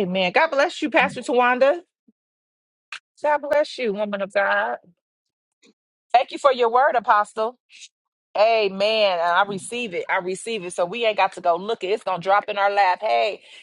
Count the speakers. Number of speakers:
1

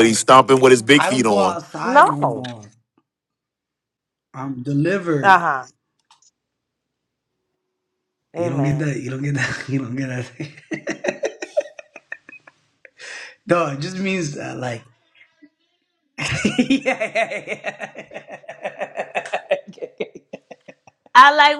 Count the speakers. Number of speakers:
3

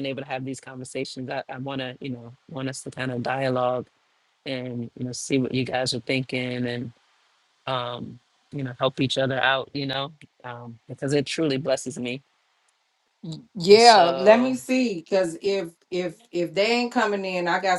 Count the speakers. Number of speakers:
2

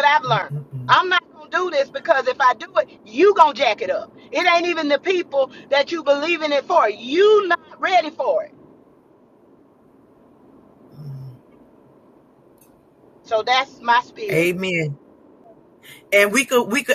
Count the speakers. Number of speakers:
2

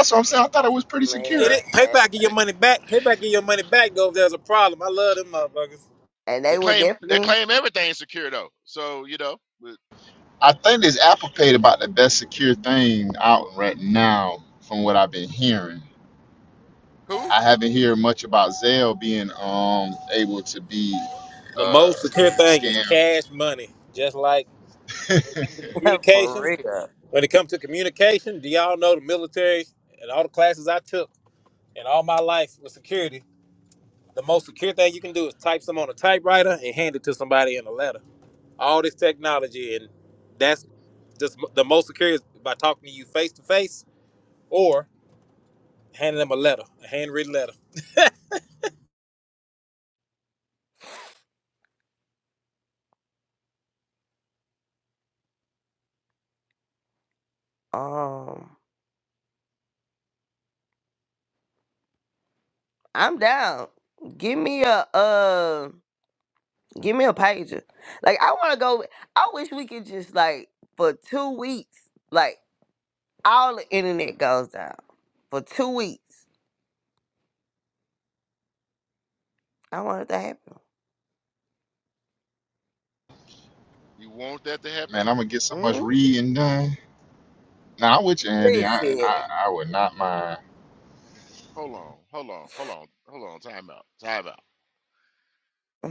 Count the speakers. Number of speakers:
4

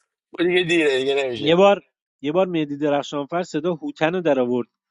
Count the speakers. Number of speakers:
2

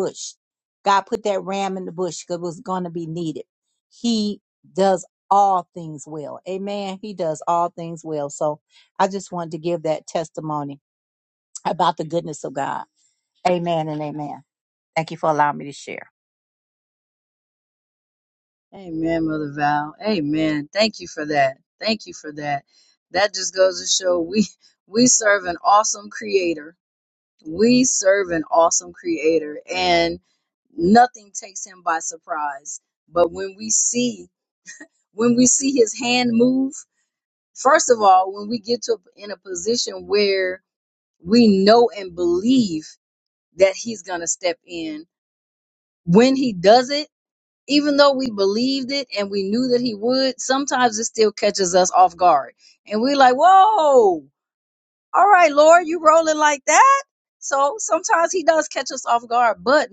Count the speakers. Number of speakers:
2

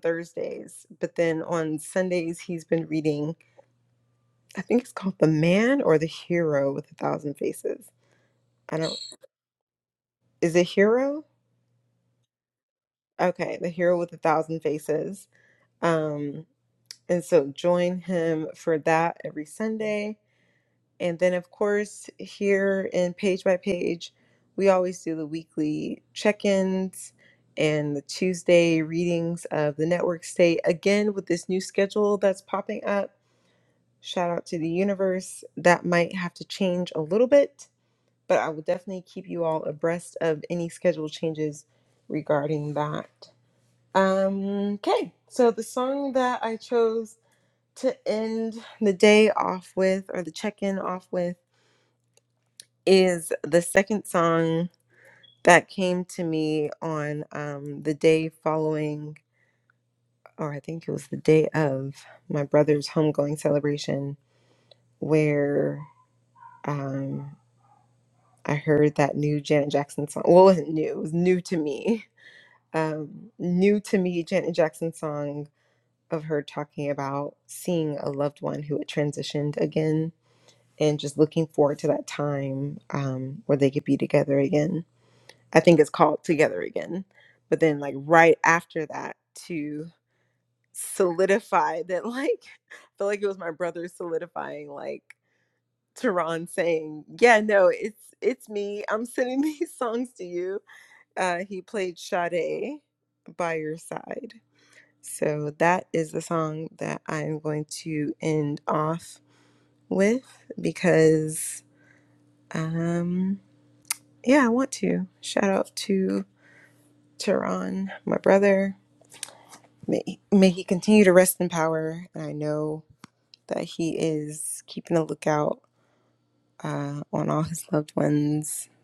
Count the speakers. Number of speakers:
1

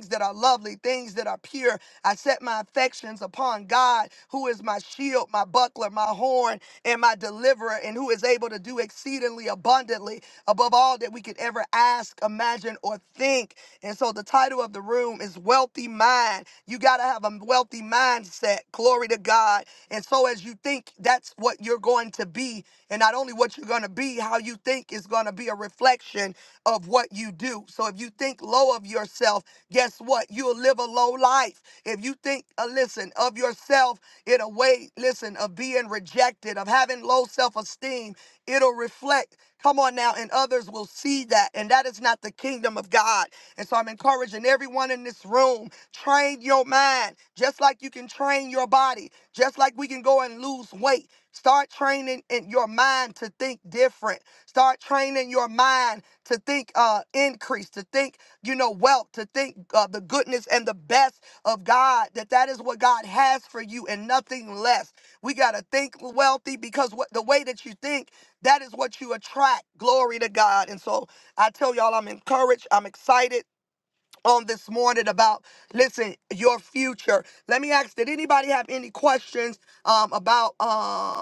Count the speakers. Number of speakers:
1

